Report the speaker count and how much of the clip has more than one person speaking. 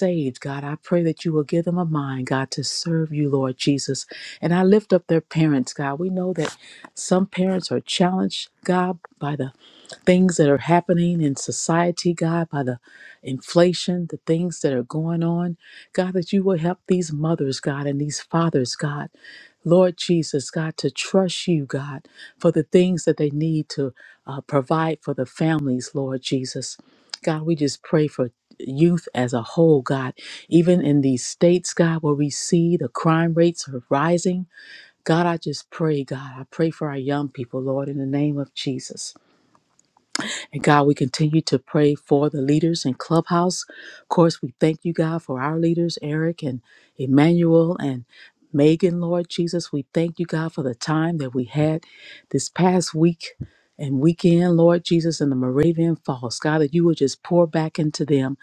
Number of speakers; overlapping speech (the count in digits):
1, no overlap